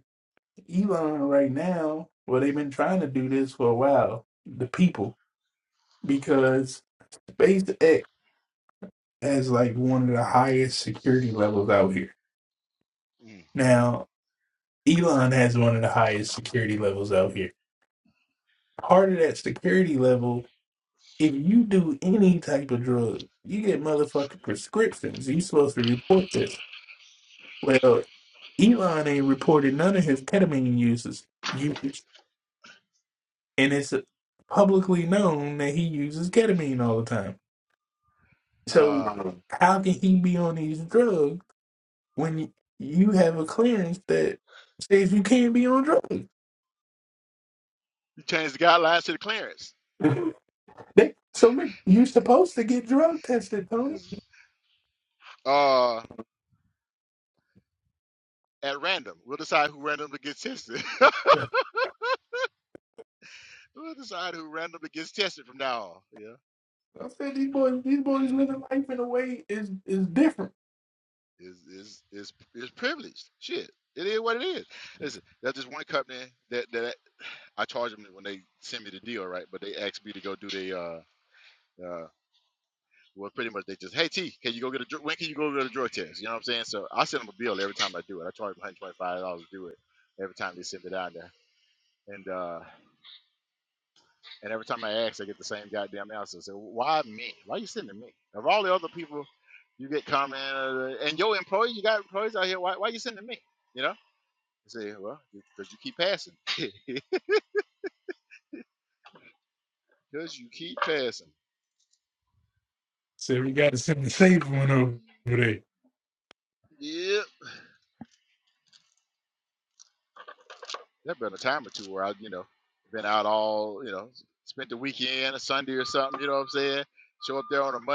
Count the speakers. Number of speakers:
two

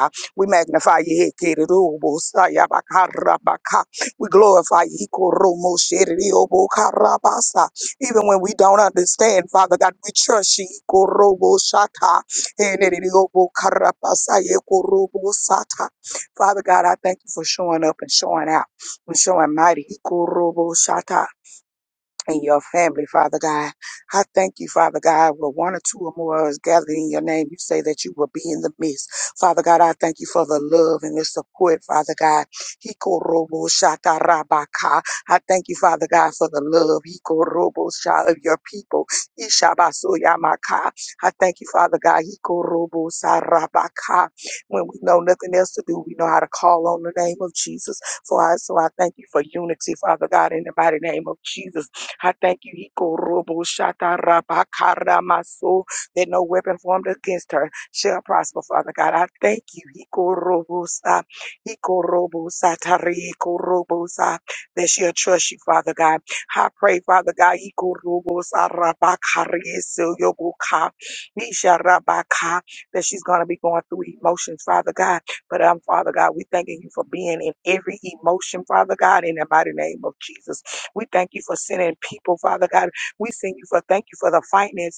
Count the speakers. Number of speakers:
one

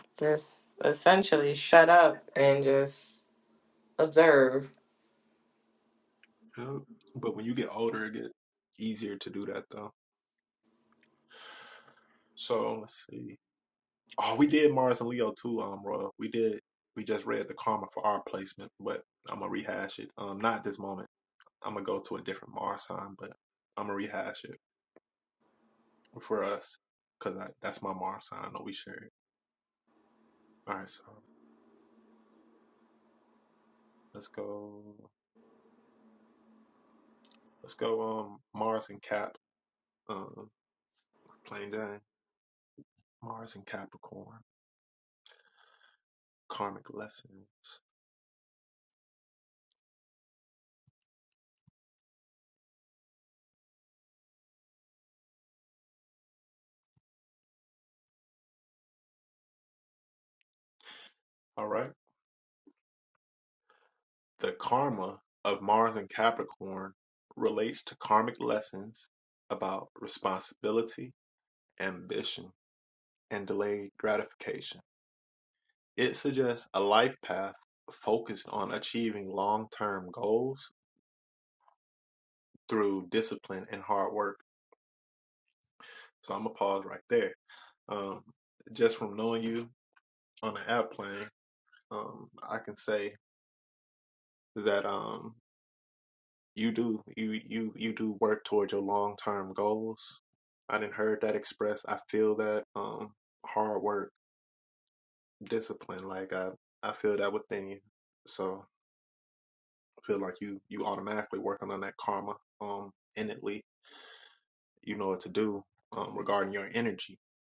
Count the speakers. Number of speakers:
two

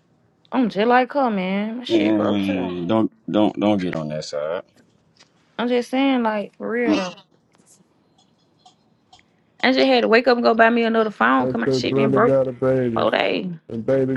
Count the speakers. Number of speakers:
three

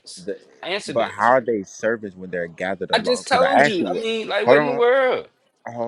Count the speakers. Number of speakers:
two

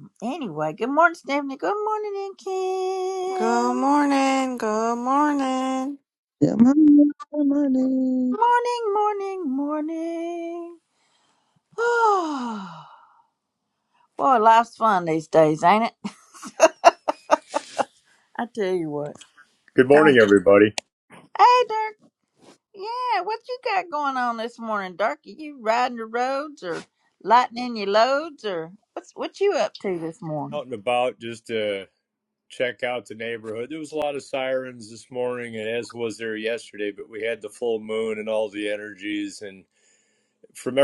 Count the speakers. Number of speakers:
four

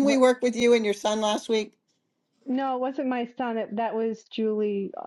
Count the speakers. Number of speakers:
two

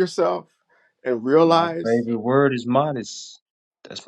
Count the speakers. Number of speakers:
two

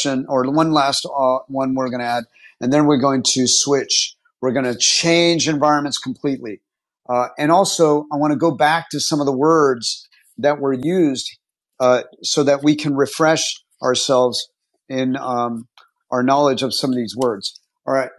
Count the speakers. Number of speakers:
one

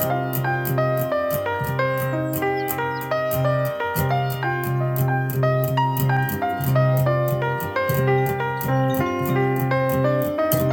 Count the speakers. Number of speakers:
zero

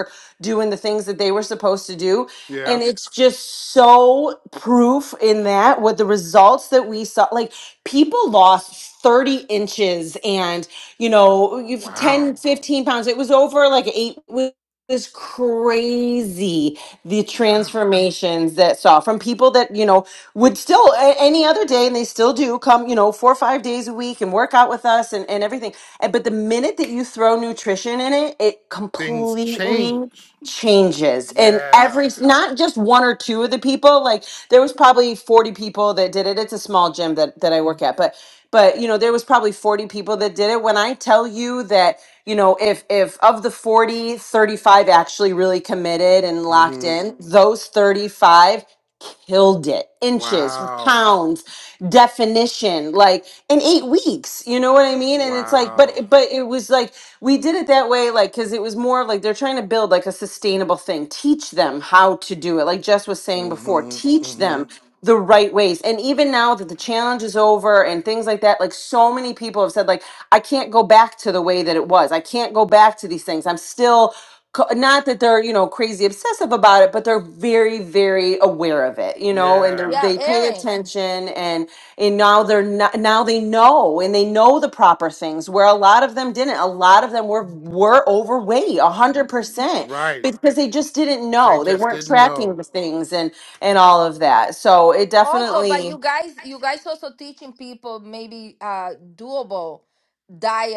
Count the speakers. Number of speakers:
three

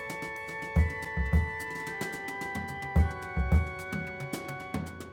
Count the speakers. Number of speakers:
zero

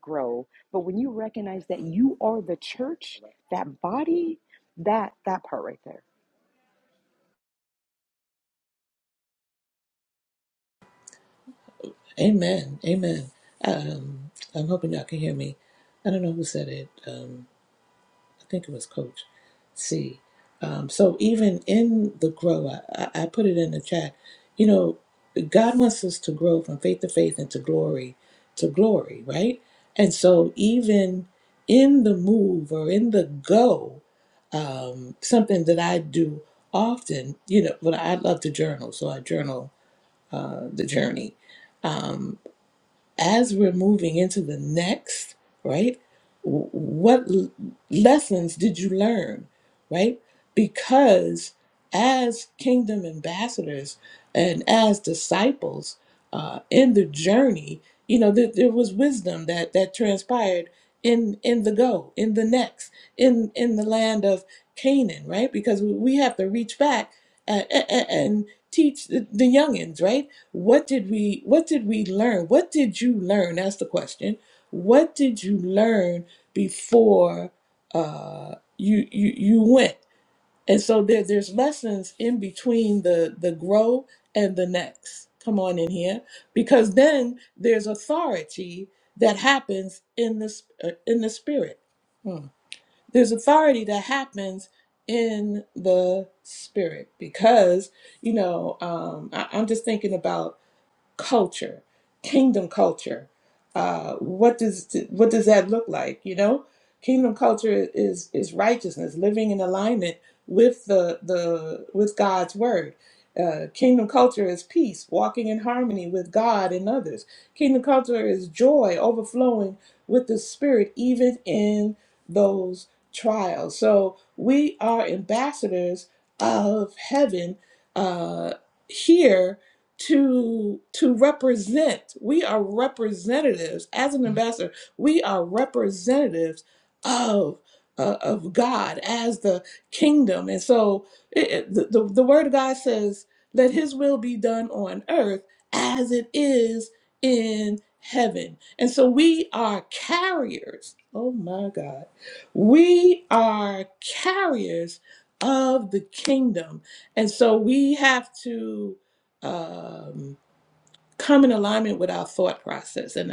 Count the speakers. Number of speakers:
two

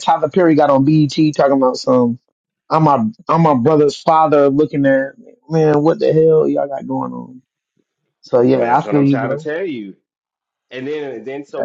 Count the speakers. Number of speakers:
two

